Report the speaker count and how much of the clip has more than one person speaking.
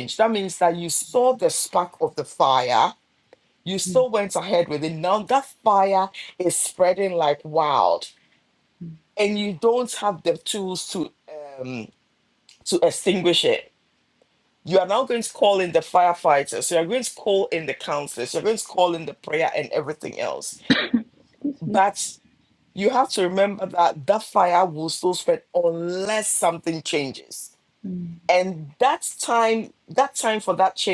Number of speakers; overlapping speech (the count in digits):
2, about 1%